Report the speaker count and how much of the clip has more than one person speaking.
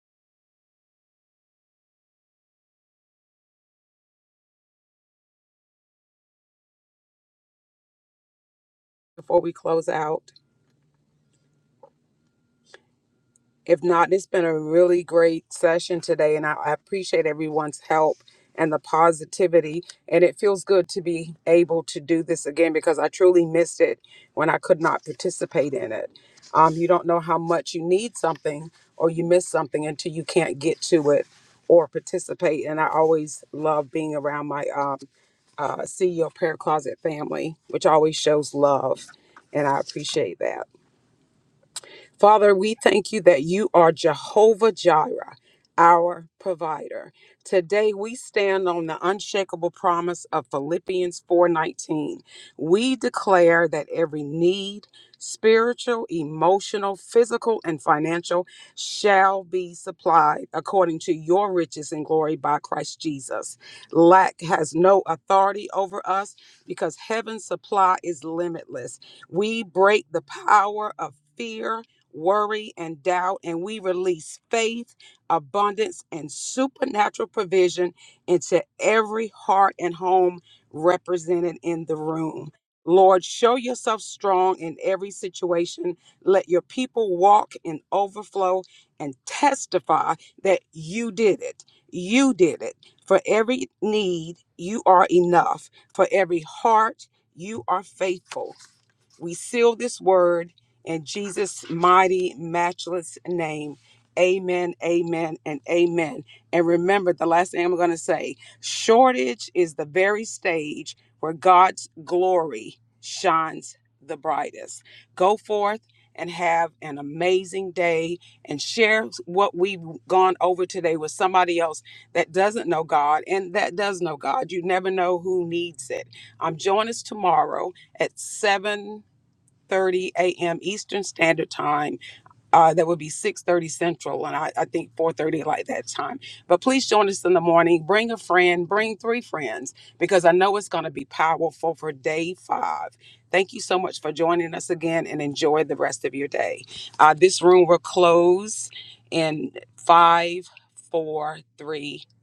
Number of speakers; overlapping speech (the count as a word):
one, no overlap